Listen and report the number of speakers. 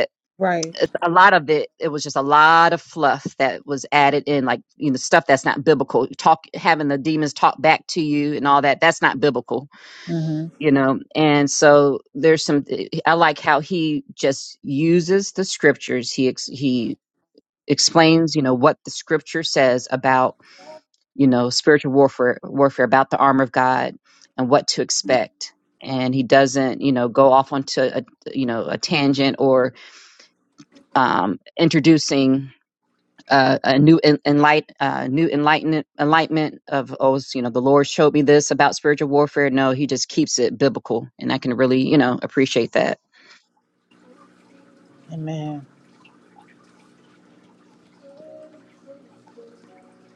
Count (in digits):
2